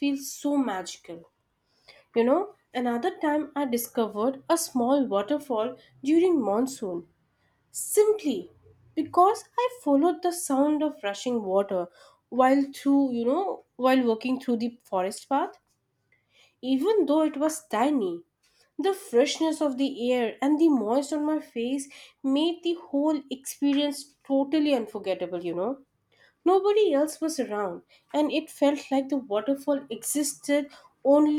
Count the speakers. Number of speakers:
1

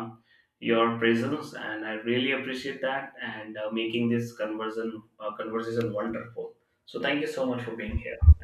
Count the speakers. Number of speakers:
1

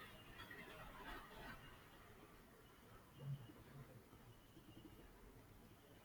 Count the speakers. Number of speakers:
0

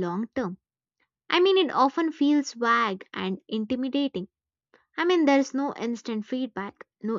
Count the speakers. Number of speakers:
1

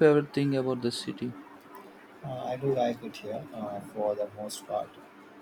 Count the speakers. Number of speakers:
2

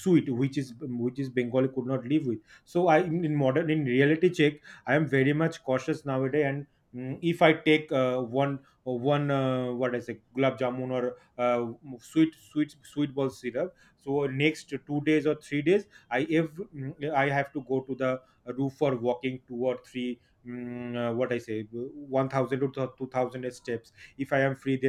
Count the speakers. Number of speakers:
1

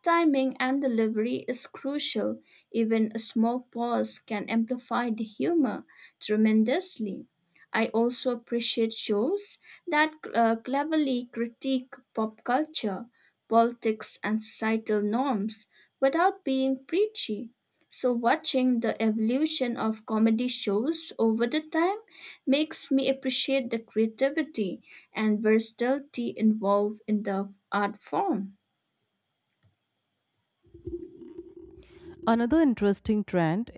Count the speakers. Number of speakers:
2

